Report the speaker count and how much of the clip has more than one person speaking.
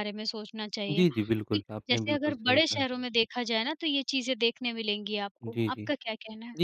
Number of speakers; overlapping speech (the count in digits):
2, about 24%